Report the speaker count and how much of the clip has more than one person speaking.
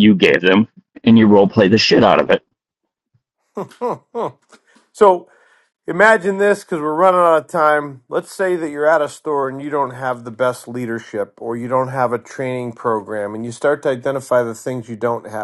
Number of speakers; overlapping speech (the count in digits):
2, no overlap